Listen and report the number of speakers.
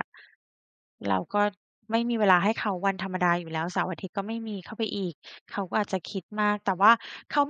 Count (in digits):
1